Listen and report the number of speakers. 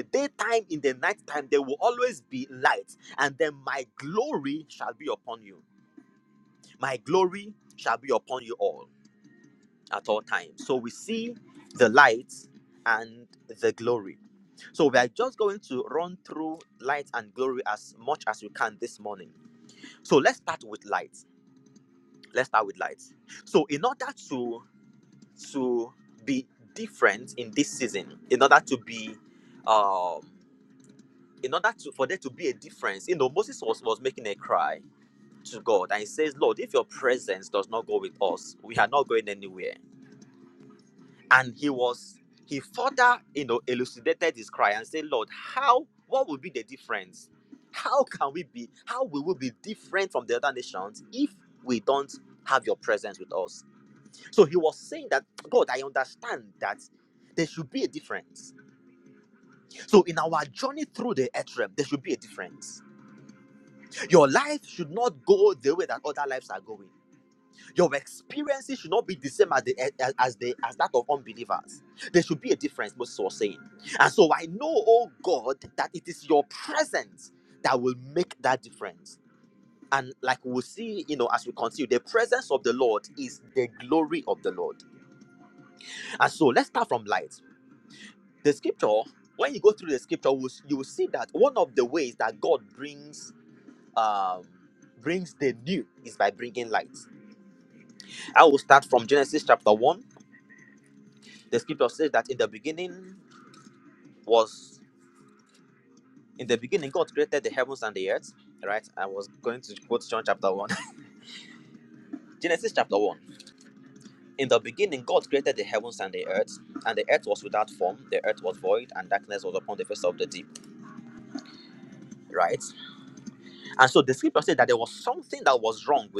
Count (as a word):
one